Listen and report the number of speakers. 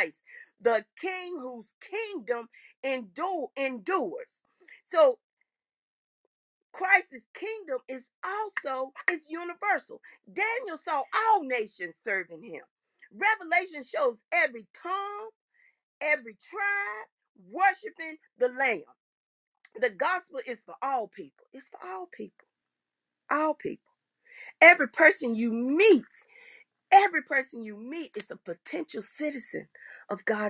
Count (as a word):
one